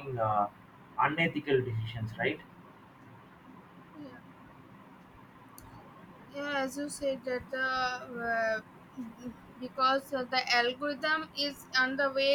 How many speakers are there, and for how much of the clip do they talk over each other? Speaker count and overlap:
2, no overlap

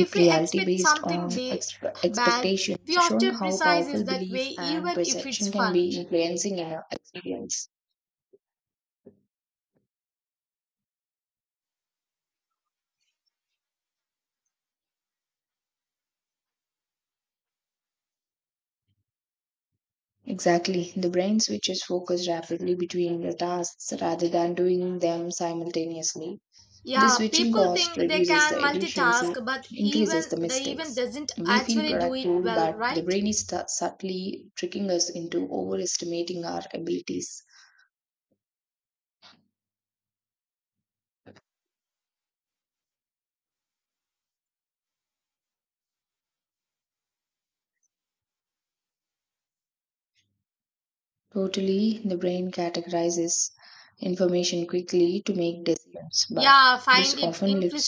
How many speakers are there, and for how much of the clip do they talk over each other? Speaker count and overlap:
2, about 20%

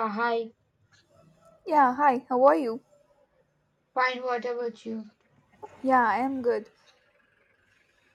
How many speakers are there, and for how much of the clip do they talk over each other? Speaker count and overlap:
2, no overlap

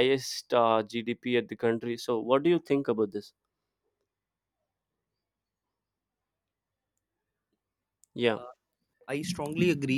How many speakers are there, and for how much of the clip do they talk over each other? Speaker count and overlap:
2, under 1%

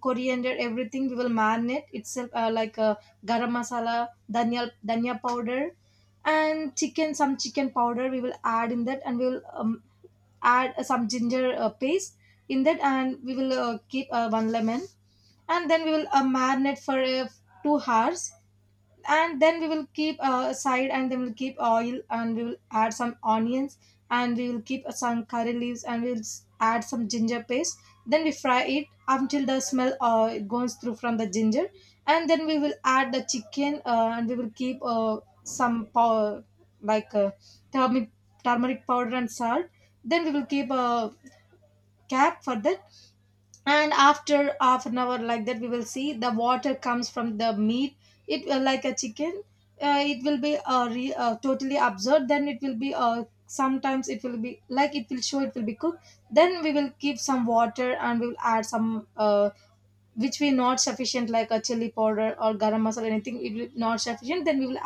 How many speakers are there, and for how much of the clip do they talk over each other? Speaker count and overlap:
1, no overlap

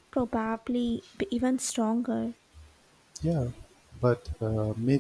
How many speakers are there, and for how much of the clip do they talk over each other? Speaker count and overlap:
2, no overlap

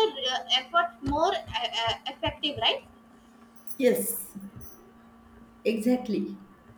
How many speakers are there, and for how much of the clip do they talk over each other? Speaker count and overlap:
2, no overlap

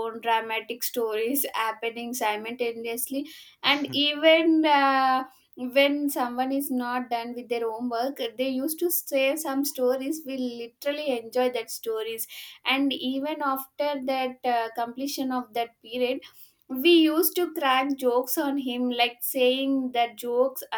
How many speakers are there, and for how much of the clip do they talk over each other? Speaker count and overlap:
1, no overlap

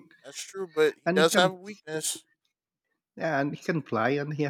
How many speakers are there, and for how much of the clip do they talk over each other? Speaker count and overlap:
2, about 10%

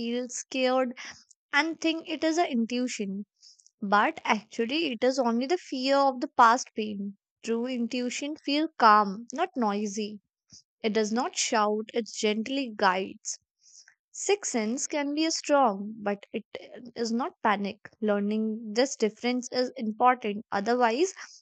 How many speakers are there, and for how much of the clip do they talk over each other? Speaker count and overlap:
1, no overlap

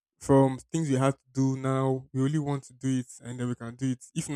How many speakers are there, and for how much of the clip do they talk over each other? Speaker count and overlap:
1, no overlap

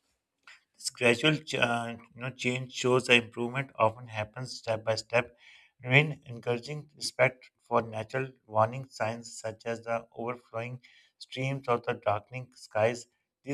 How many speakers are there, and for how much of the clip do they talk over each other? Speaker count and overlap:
1, no overlap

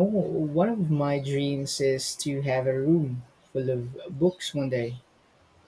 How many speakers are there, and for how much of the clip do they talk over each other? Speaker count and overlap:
1, no overlap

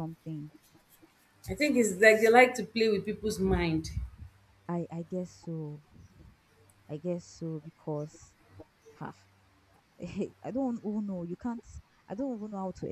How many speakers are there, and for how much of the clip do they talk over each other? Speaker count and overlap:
2, no overlap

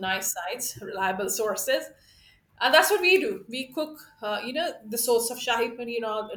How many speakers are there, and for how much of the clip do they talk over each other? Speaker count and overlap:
1, no overlap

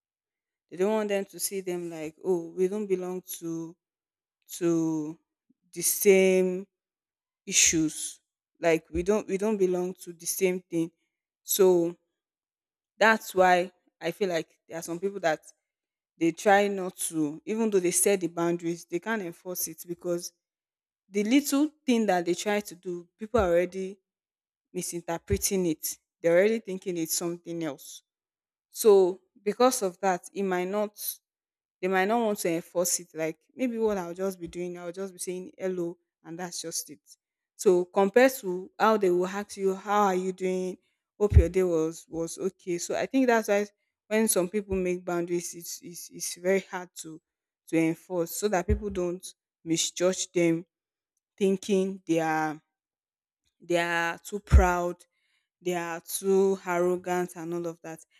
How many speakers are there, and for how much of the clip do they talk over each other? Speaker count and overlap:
1, no overlap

